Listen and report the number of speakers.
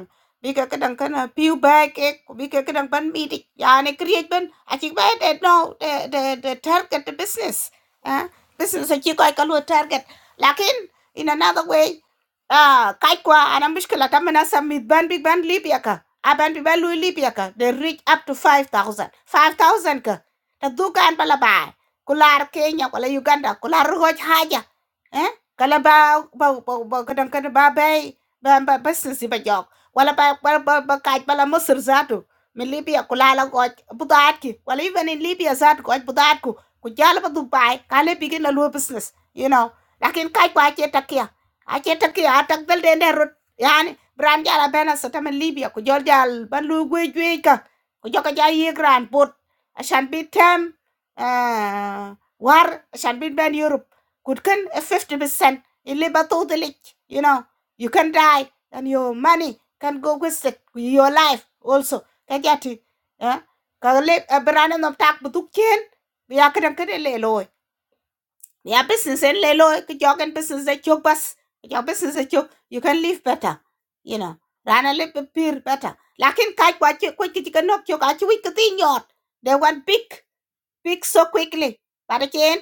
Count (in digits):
1